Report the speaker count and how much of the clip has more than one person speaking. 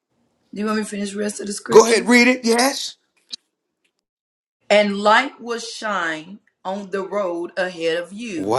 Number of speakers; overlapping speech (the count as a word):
two, about 7%